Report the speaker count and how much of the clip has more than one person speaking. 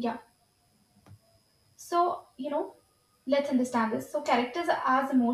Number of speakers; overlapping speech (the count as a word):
one, no overlap